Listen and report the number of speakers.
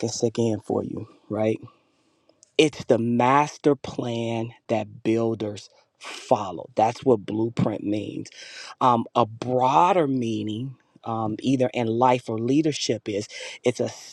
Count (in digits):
1